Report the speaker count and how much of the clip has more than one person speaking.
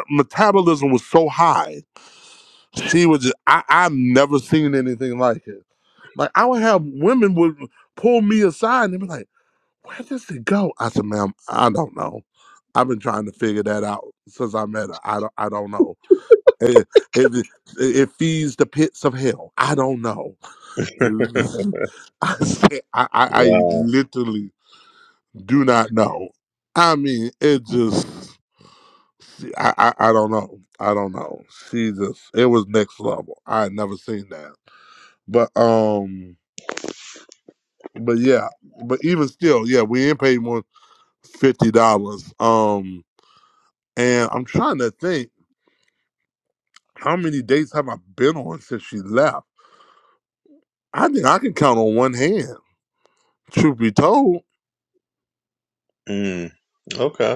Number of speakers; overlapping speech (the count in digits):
2, about 1%